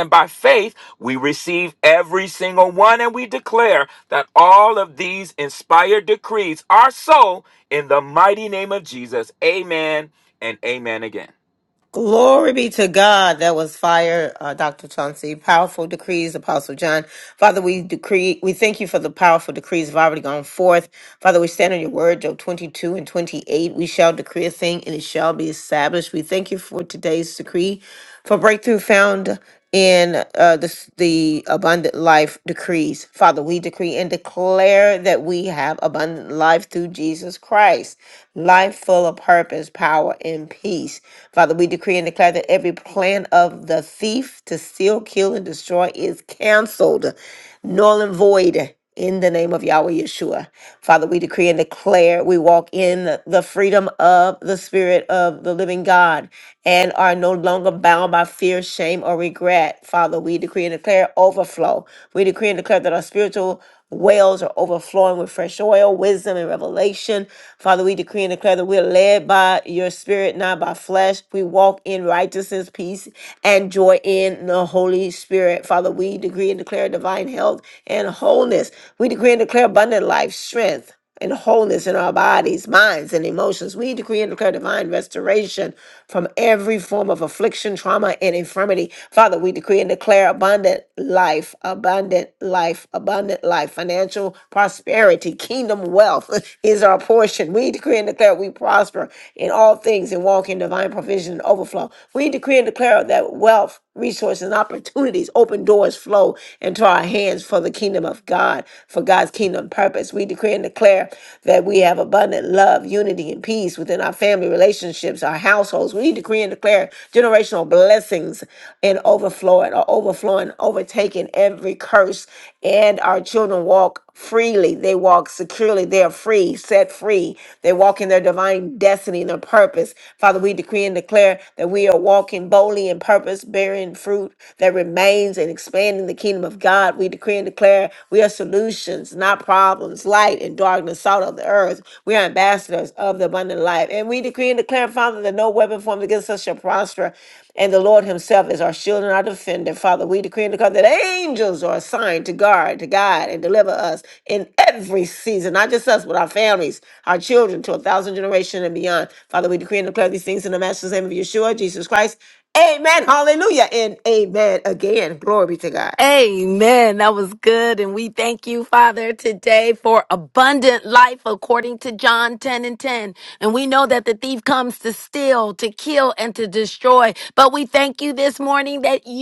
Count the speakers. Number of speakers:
3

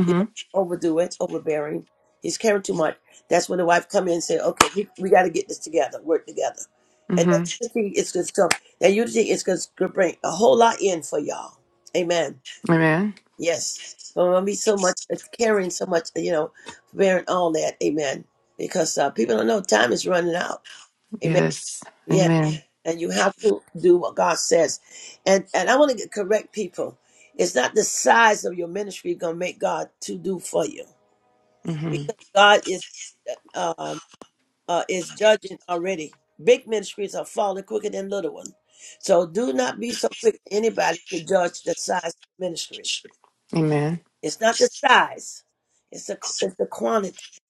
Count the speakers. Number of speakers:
2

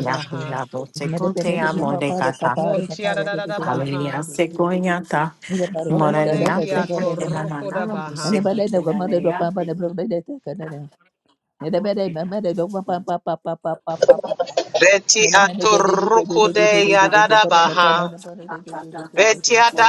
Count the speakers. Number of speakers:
3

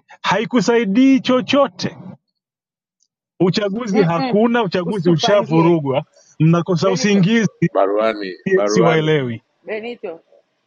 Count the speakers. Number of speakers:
3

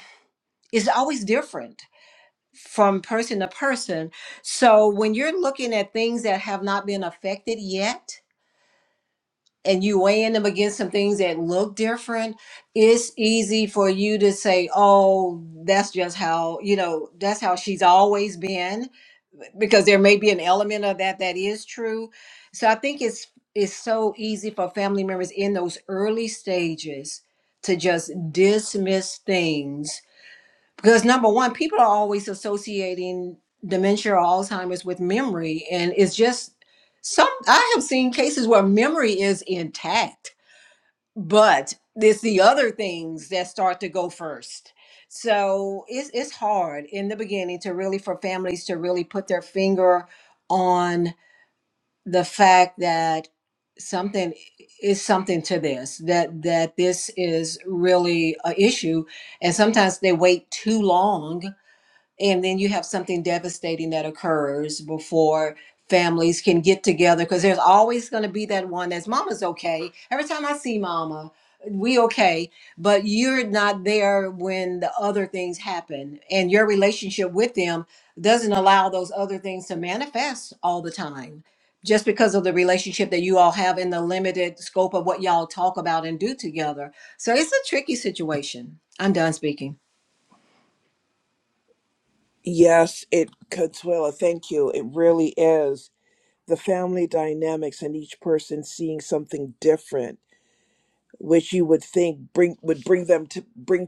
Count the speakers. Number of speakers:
2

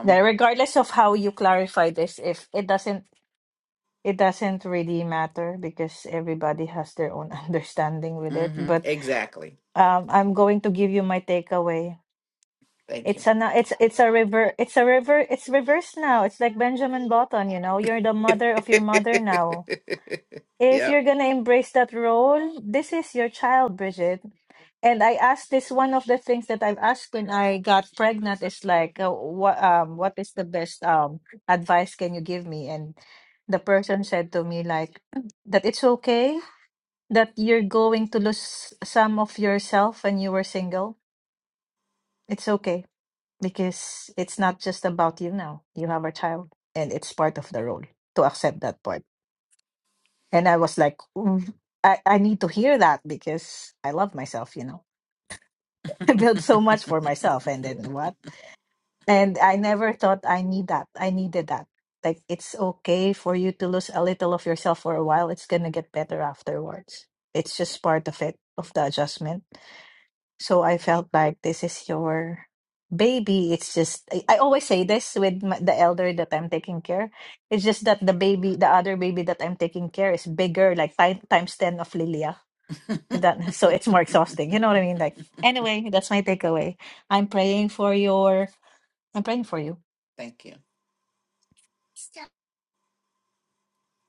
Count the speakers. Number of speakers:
2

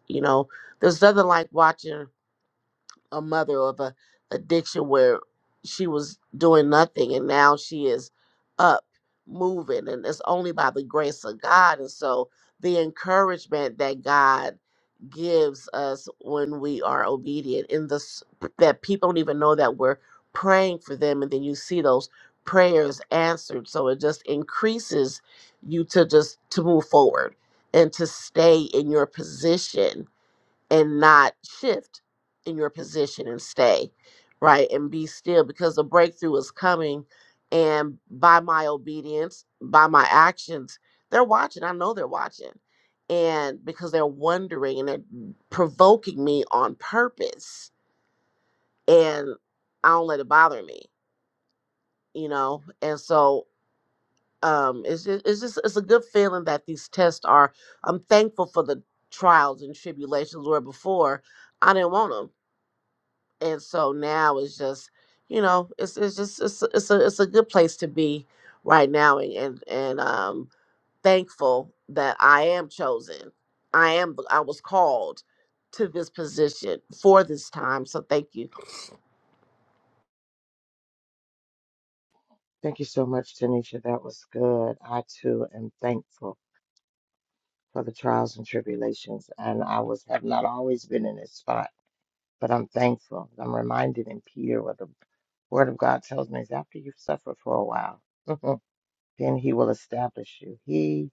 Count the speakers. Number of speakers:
2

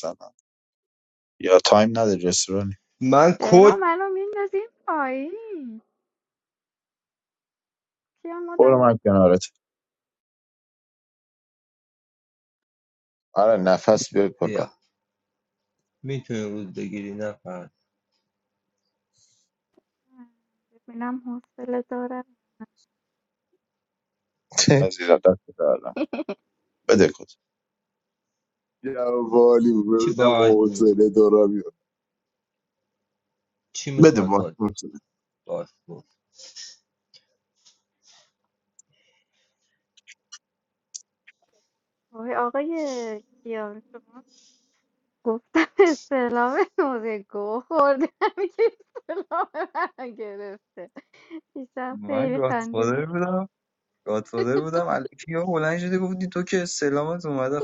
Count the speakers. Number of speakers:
5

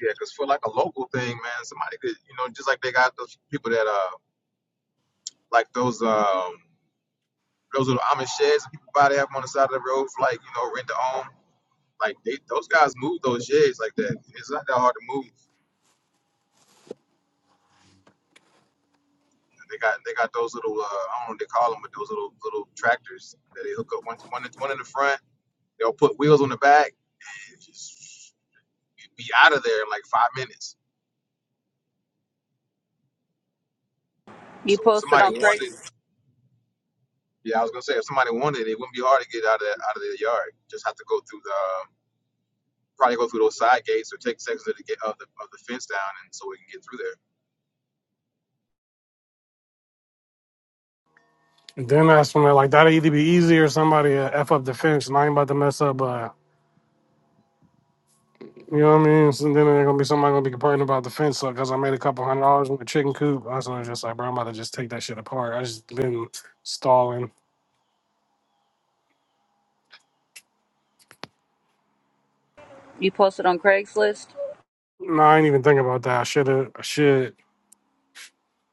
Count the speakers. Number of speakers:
3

